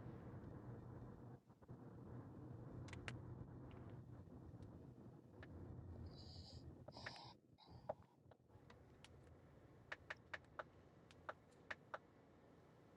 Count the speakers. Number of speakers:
0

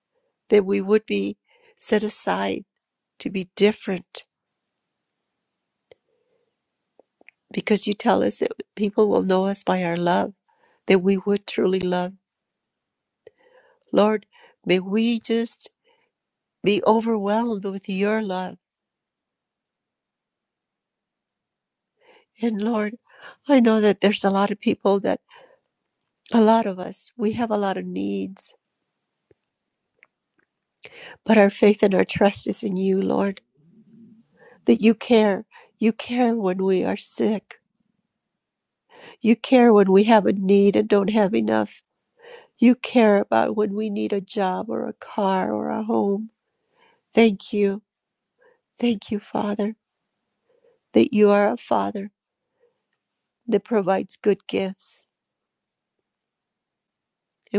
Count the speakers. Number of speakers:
1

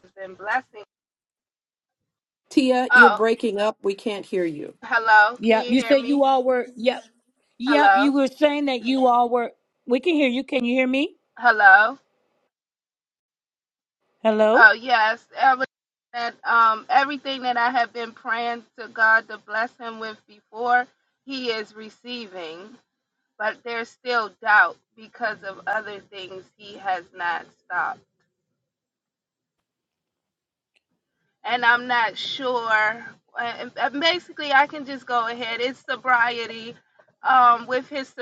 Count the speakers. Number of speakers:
3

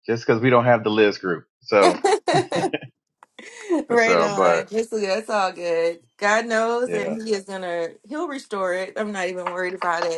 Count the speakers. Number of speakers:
2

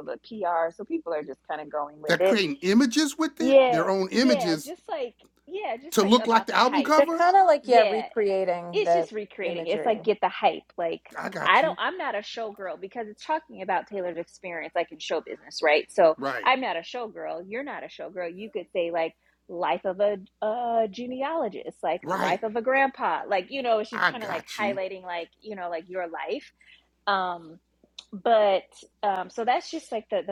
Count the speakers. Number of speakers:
3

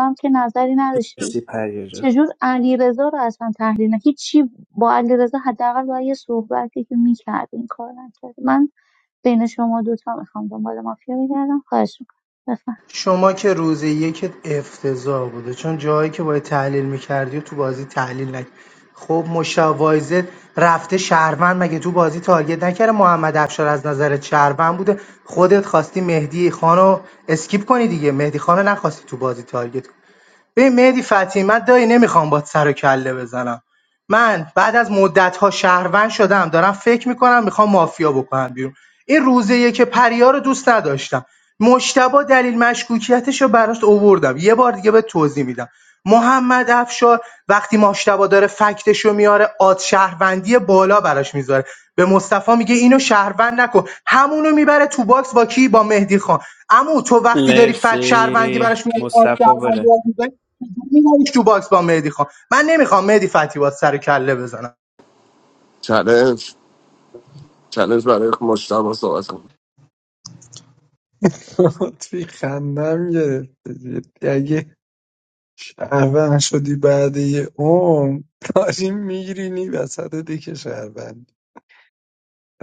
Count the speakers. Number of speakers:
5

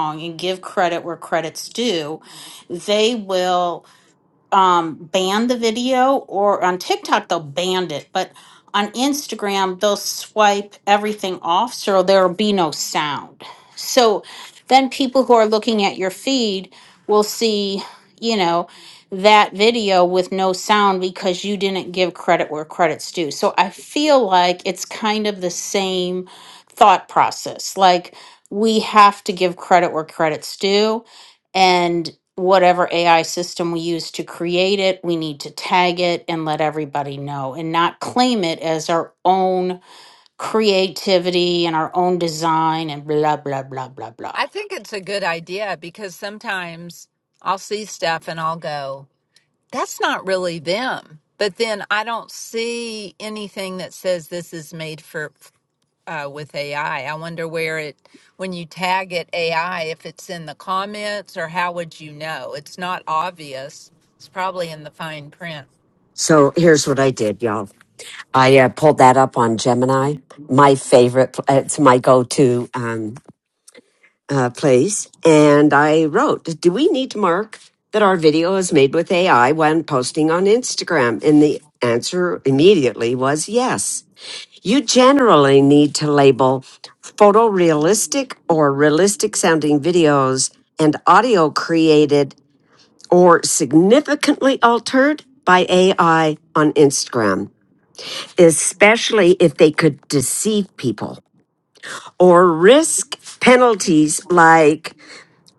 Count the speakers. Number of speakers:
3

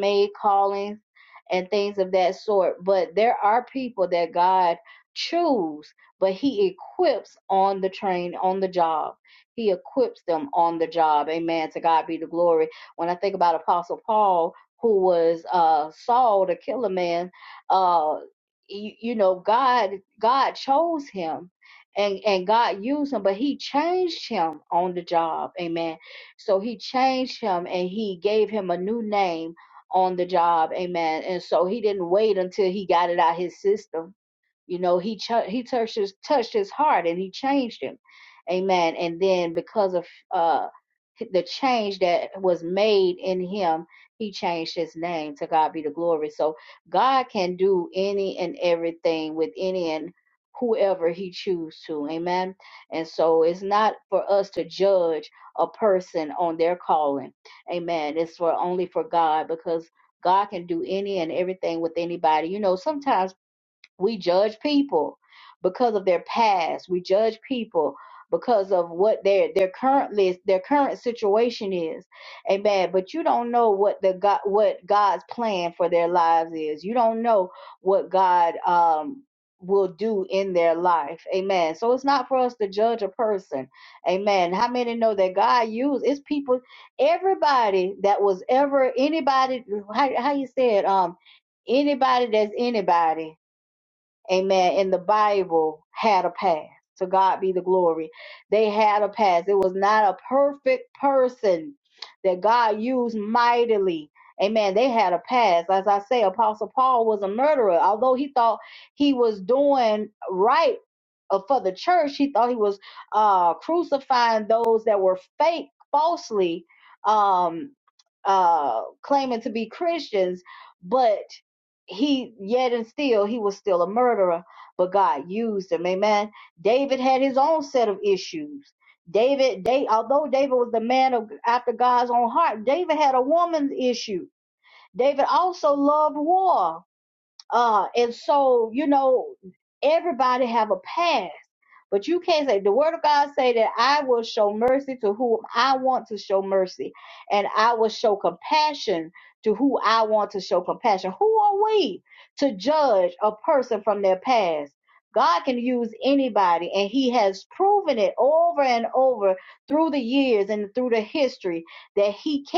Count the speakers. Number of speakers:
1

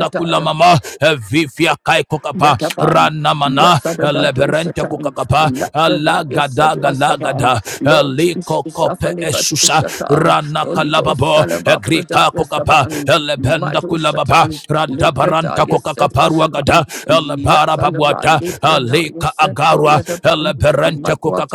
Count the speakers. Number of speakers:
2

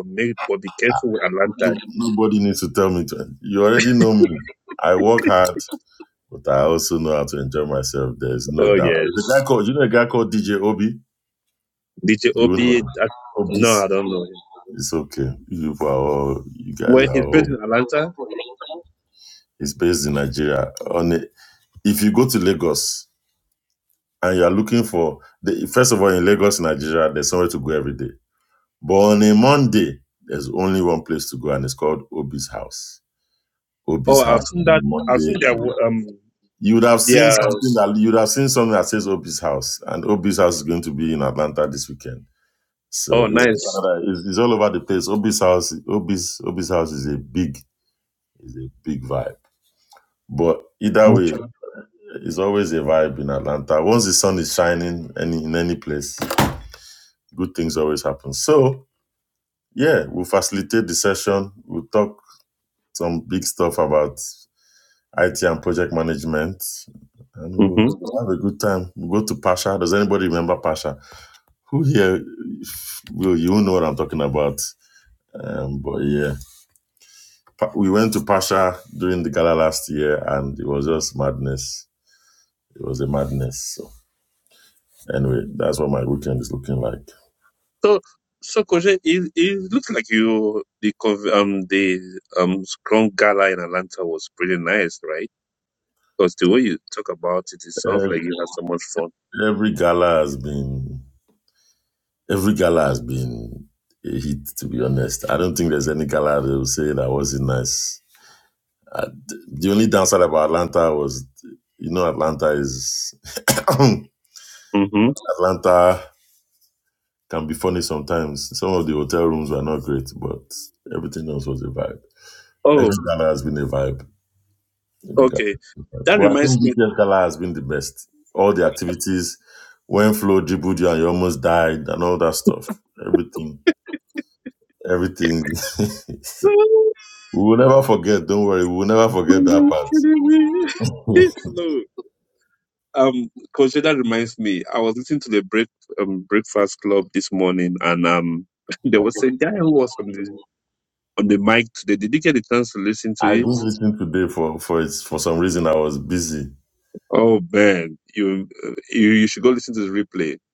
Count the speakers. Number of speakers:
2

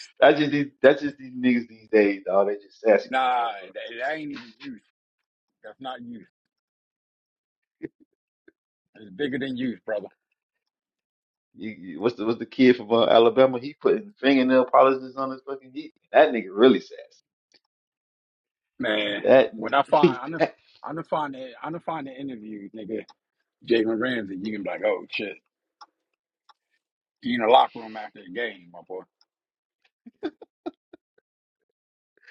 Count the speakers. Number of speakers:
2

